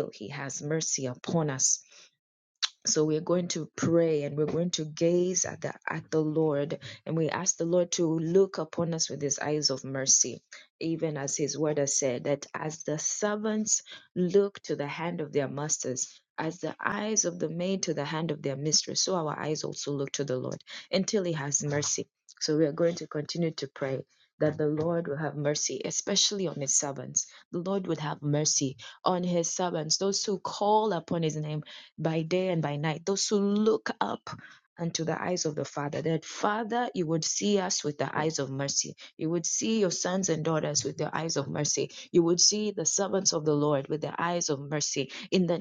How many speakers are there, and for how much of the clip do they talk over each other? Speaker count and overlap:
one, no overlap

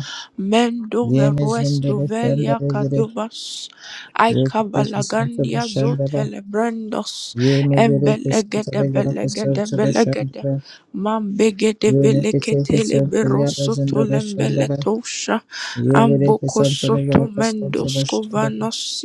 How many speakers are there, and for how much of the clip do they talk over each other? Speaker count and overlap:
two, about 60%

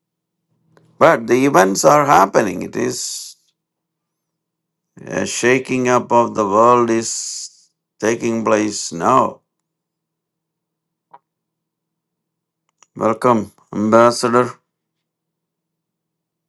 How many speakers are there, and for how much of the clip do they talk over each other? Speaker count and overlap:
one, no overlap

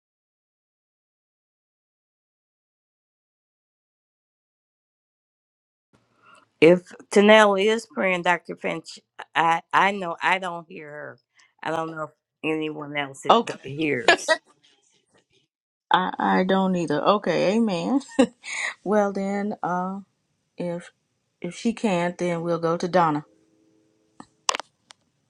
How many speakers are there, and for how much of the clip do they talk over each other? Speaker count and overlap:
two, under 1%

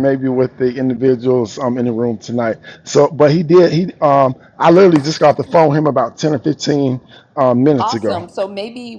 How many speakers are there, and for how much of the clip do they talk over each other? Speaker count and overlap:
two, about 5%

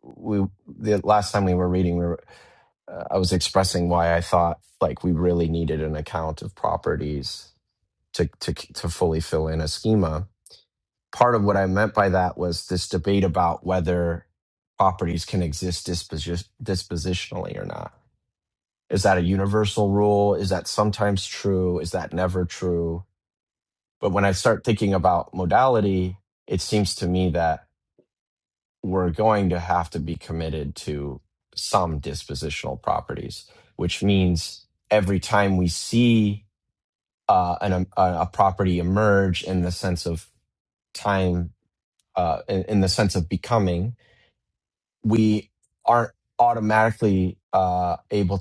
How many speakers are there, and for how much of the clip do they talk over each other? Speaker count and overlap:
one, no overlap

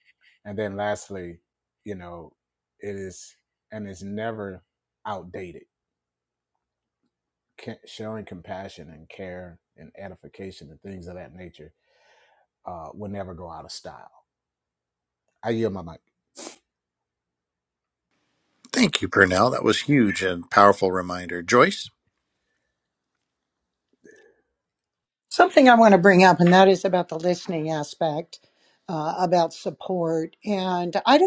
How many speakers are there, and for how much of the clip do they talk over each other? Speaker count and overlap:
three, no overlap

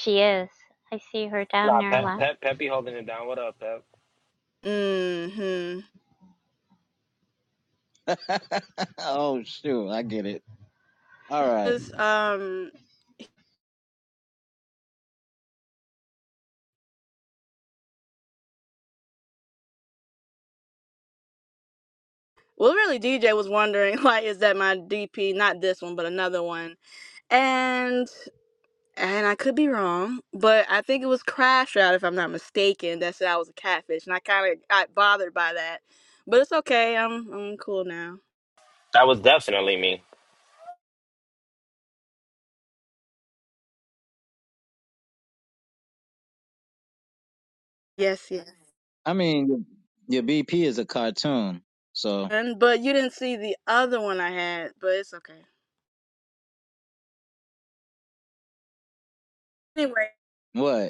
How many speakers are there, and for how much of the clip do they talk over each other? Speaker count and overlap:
four, about 1%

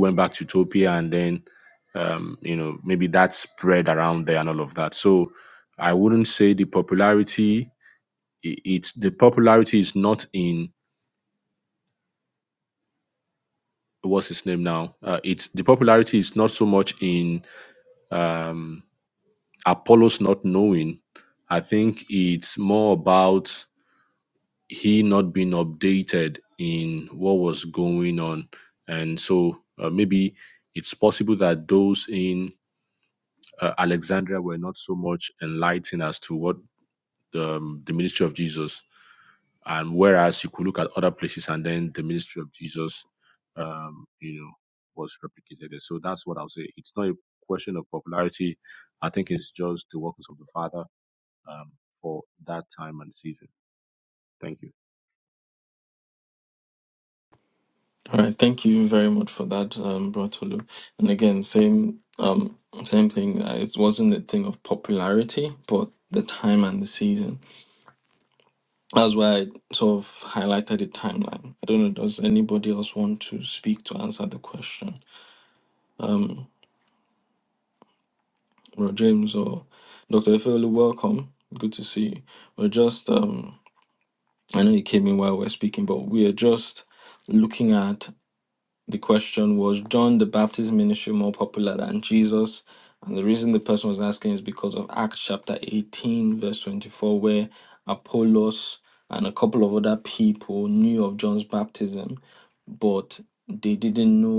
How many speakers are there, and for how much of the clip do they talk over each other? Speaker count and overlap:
two, no overlap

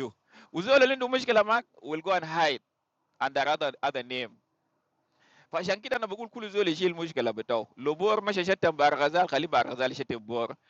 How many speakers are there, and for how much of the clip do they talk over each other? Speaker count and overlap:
one, no overlap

